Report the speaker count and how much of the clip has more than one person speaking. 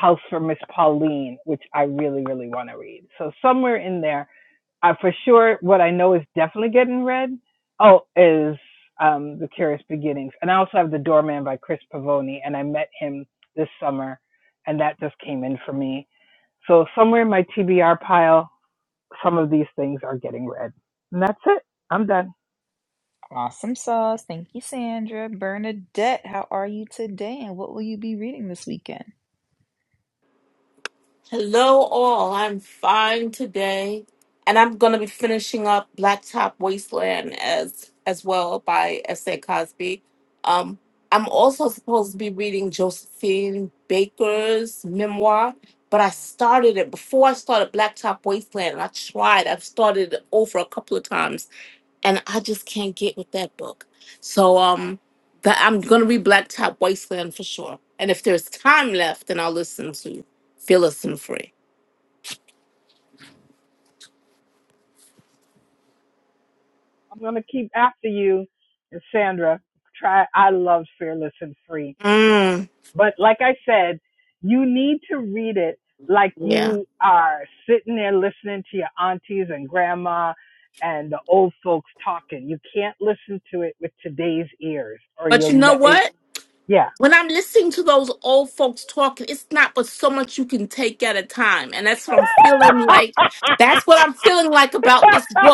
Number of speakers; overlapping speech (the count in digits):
3, about 1%